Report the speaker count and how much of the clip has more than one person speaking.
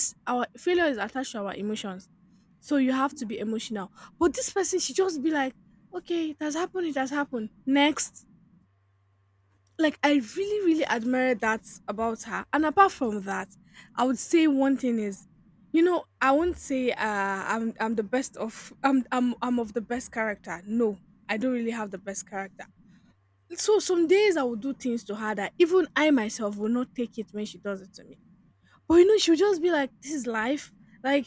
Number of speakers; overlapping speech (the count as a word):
one, no overlap